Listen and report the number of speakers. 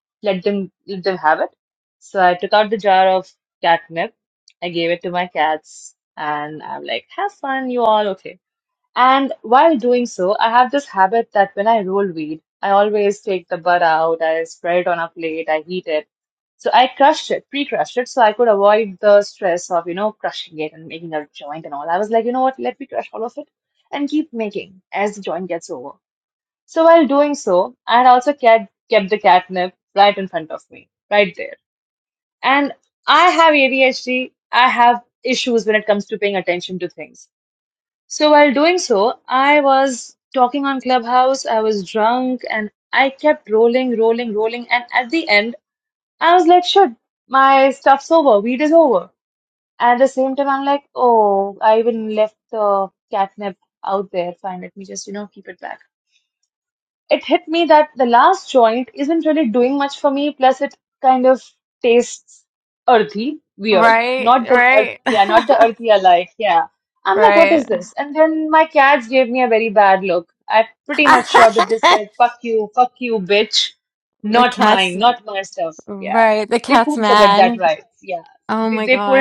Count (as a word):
two